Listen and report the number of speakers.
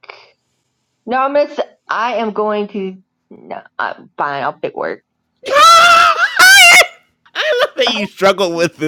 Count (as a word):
two